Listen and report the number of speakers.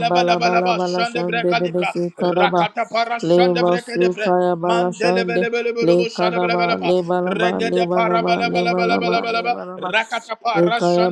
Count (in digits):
2